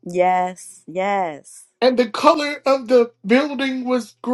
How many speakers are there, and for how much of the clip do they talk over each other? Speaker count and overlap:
2, no overlap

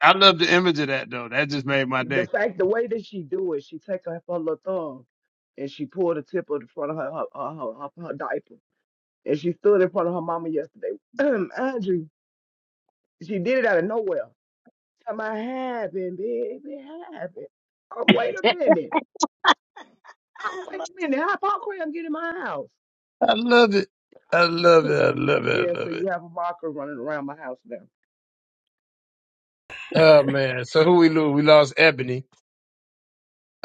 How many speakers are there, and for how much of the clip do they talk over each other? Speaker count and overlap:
2, about 2%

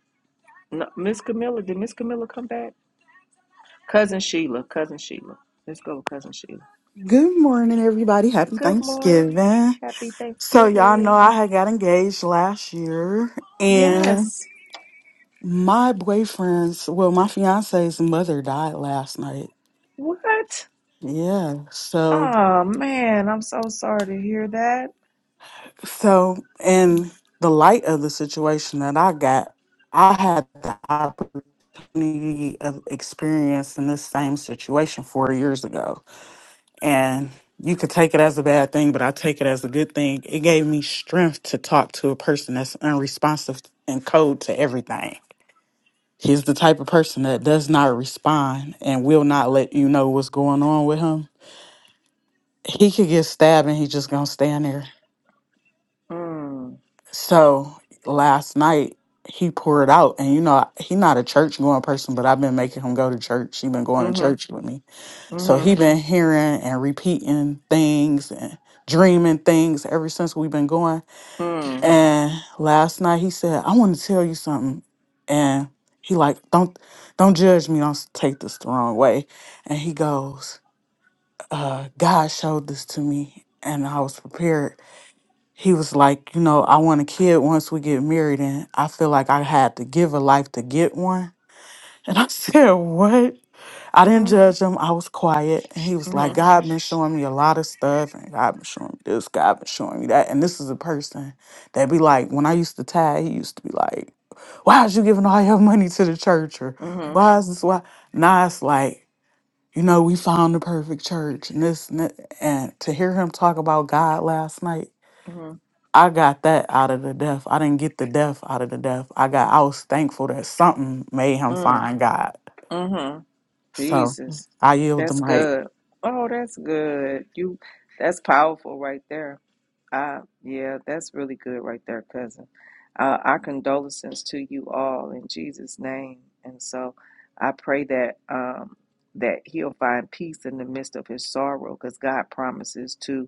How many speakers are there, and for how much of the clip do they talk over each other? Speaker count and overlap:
2, about 3%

